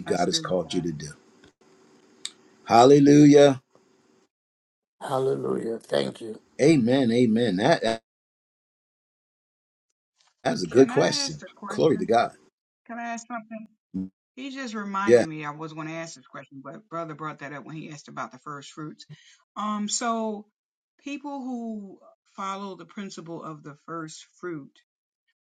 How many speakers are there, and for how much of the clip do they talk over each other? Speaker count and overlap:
three, about 8%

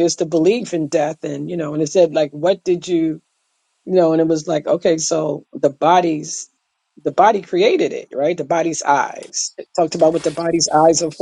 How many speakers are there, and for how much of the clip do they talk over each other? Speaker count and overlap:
one, no overlap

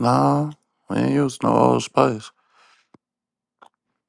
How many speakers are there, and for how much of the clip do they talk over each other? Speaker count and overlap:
one, no overlap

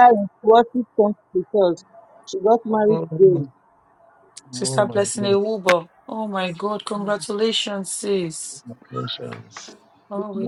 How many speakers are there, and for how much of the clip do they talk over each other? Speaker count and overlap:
three, about 18%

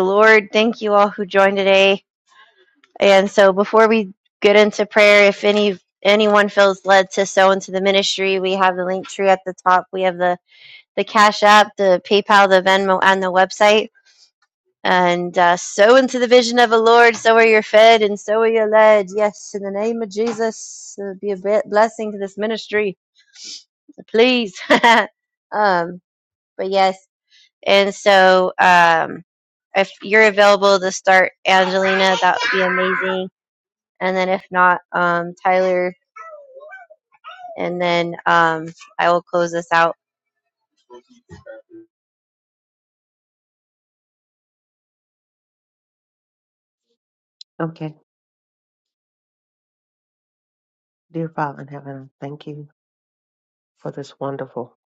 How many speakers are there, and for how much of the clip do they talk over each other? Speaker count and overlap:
two, no overlap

